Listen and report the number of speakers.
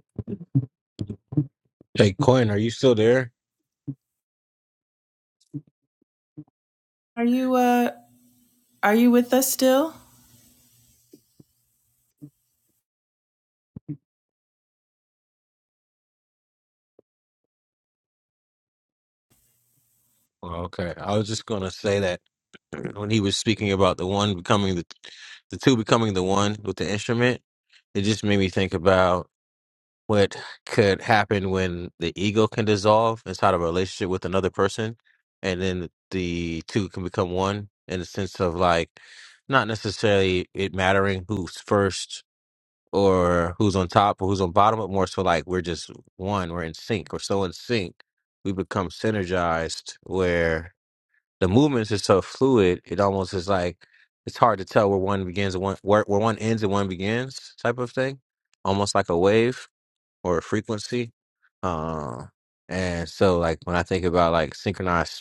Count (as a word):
two